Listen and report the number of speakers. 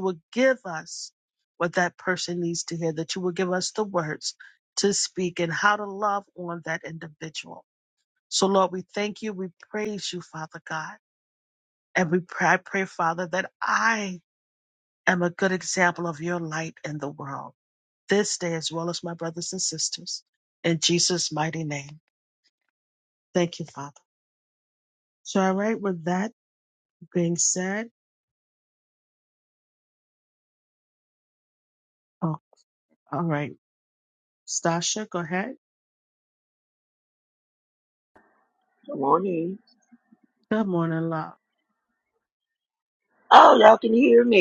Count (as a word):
two